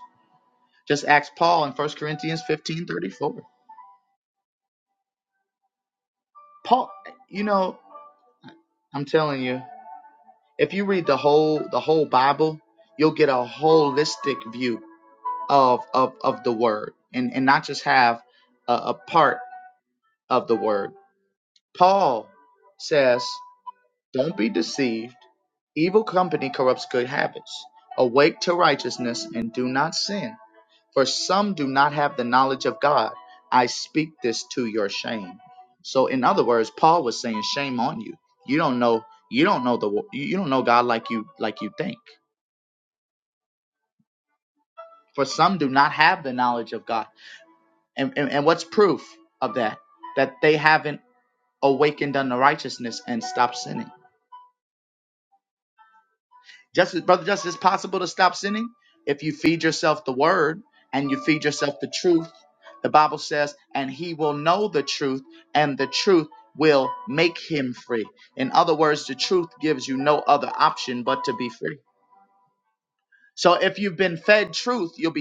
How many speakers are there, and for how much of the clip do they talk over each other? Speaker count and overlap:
1, no overlap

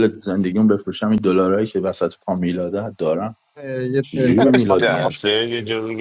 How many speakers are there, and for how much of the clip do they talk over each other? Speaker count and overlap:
3, about 19%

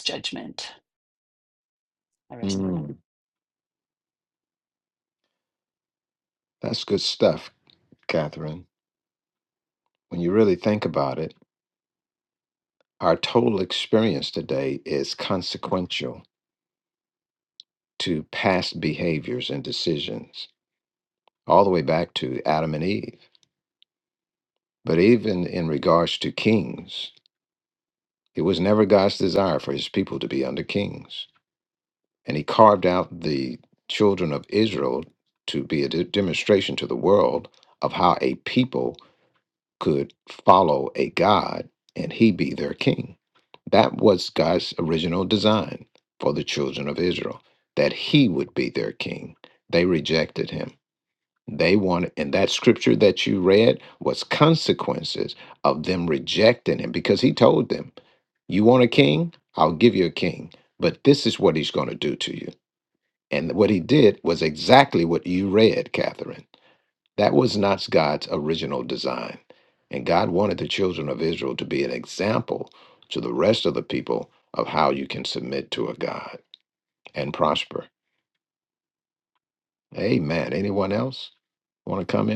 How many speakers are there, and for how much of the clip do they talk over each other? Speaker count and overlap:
2, under 1%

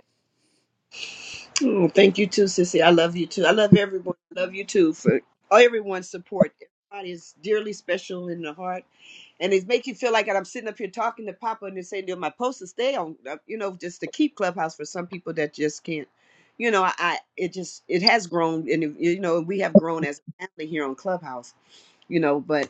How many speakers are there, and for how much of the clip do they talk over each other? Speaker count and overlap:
1, no overlap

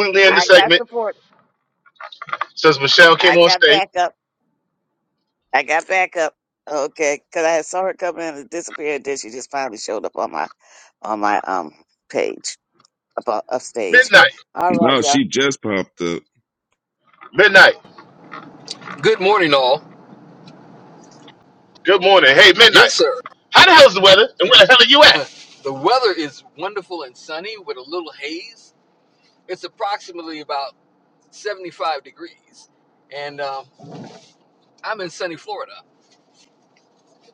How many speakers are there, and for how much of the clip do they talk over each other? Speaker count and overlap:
4, about 6%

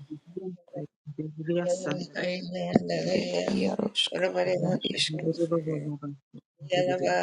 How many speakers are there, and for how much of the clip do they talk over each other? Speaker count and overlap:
3, about 30%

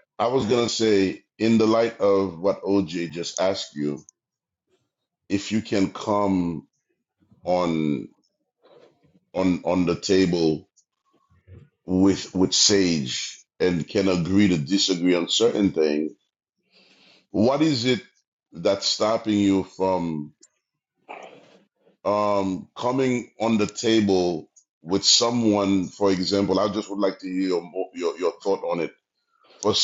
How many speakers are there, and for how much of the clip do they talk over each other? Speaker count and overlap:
1, no overlap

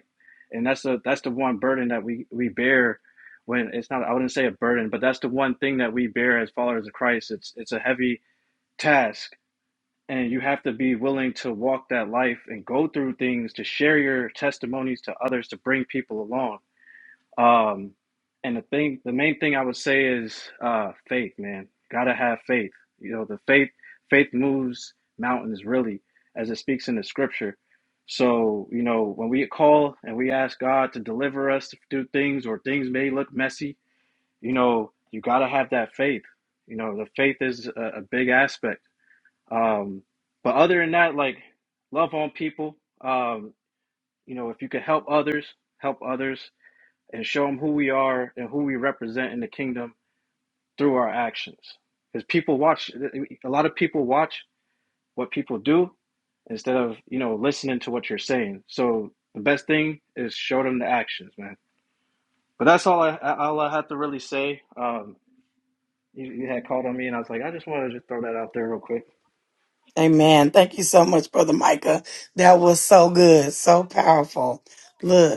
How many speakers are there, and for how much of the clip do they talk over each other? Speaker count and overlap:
2, no overlap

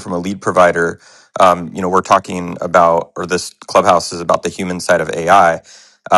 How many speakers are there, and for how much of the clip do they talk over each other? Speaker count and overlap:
1, no overlap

